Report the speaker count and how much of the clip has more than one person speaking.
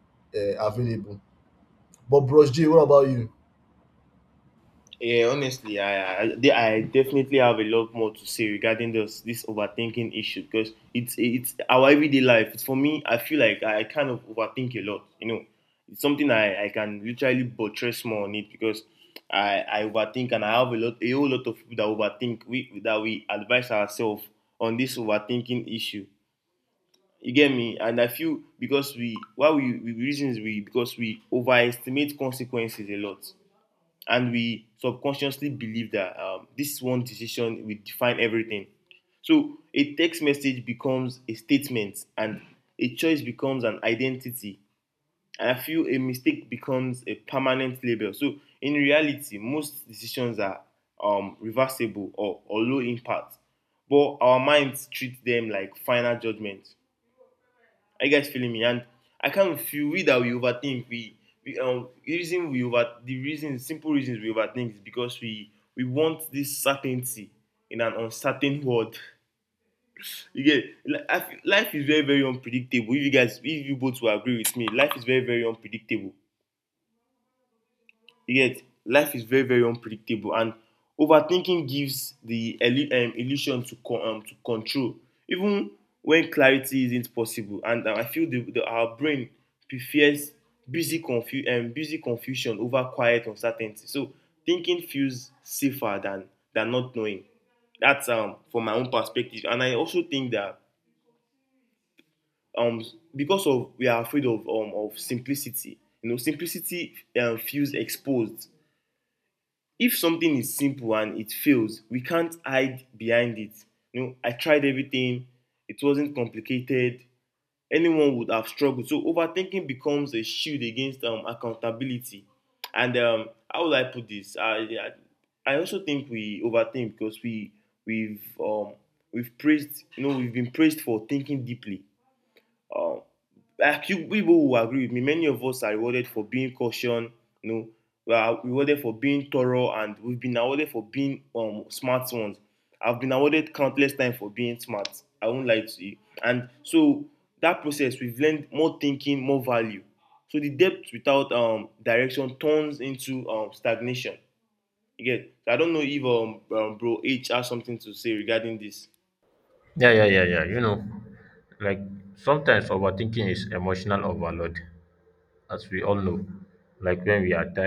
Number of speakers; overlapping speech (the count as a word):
three, no overlap